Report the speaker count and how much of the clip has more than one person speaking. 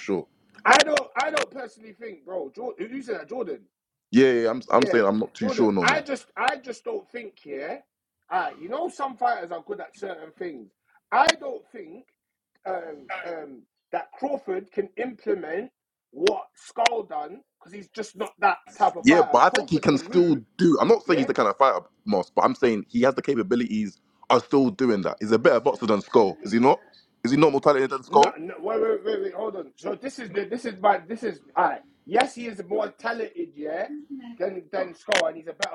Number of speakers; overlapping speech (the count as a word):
two, about 7%